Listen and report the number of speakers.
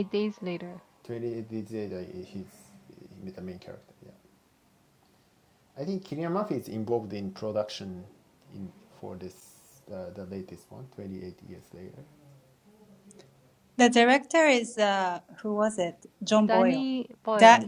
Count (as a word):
three